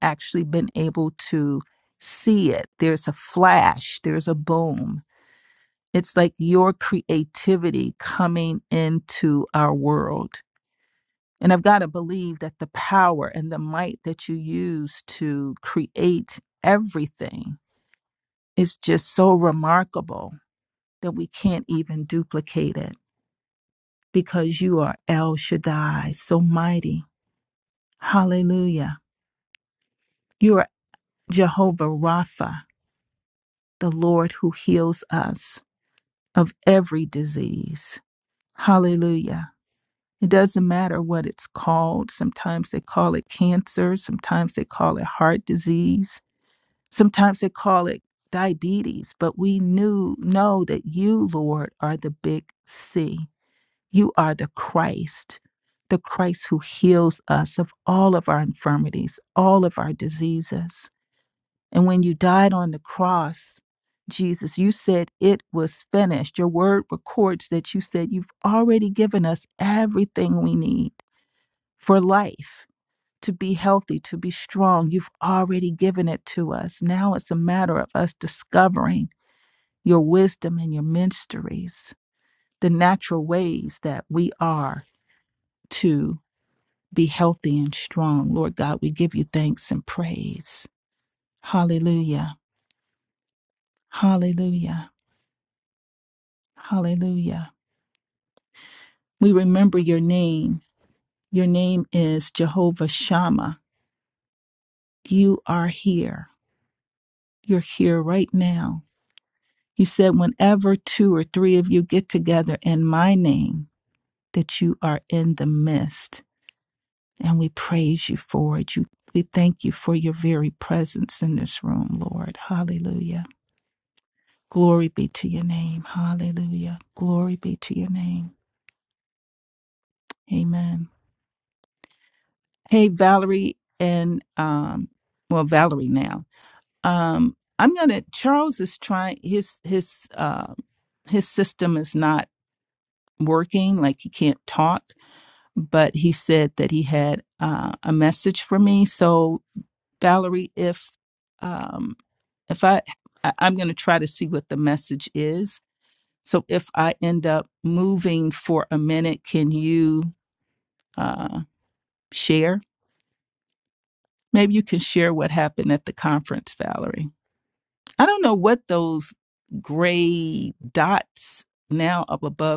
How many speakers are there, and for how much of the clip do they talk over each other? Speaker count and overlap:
one, no overlap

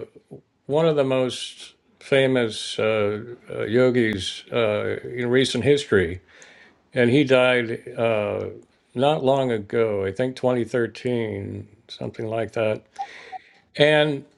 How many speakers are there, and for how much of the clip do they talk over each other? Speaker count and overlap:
one, no overlap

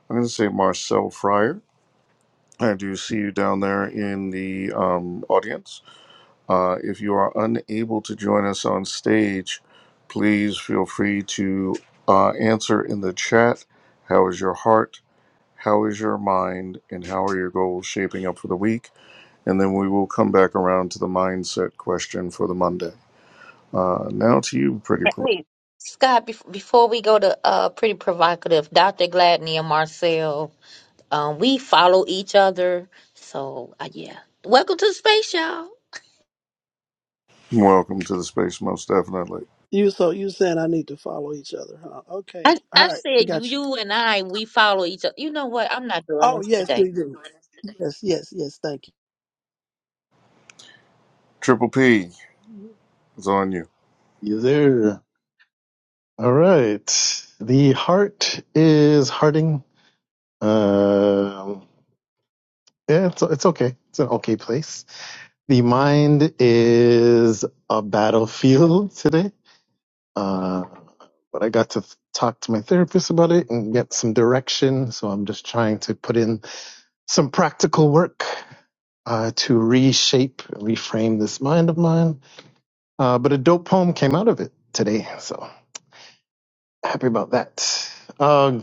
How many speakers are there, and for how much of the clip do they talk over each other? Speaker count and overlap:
four, about 2%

